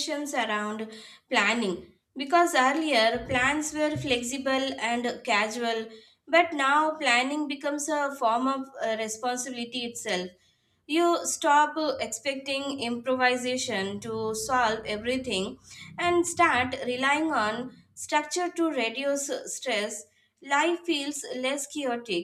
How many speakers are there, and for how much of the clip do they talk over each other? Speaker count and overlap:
1, no overlap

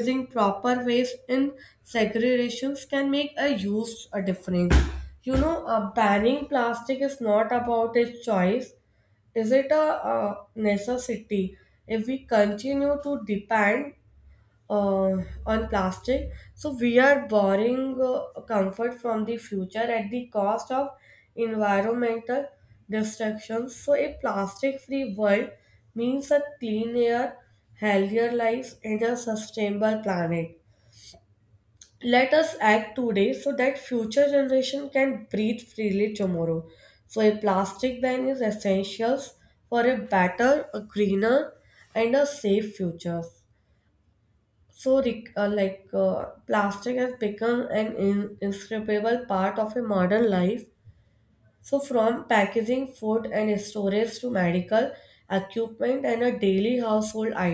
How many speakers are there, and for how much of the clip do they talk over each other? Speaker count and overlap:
1, no overlap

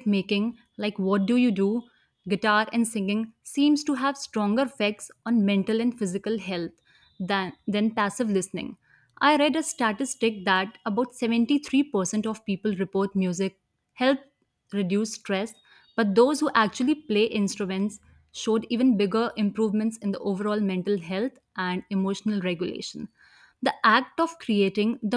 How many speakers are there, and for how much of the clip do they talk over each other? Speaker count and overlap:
1, no overlap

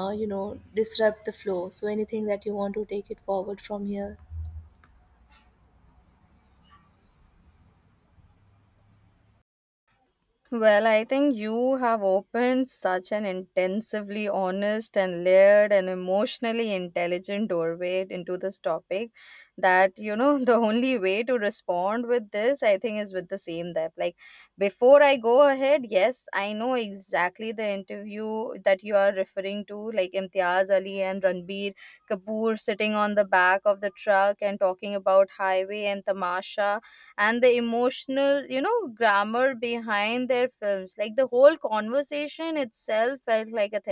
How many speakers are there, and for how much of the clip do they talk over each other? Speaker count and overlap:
2, no overlap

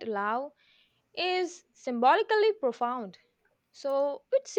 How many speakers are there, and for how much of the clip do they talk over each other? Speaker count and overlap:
1, no overlap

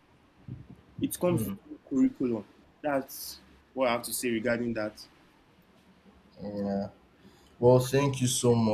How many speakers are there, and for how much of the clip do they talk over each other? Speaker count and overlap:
2, about 3%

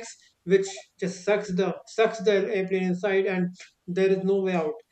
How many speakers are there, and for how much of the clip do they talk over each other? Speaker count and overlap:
1, no overlap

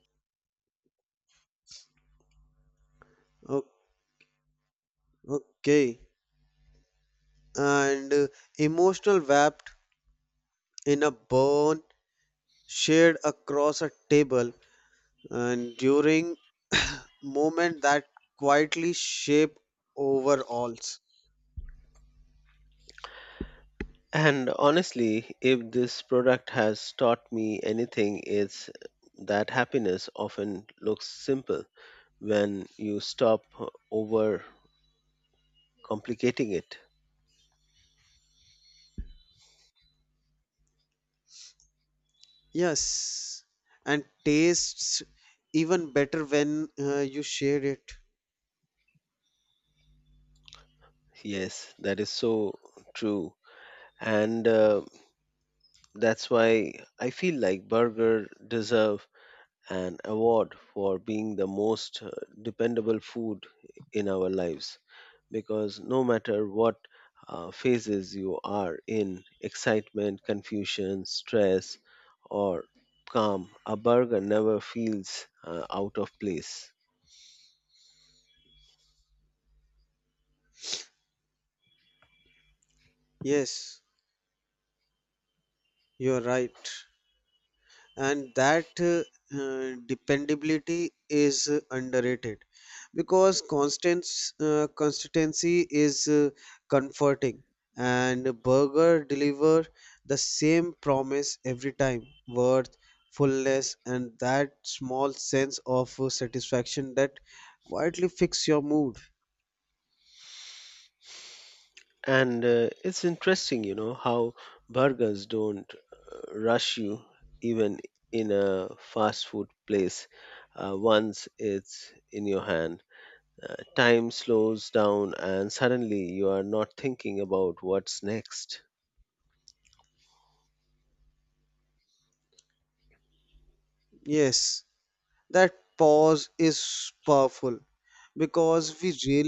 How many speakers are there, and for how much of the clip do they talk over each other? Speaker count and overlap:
2, no overlap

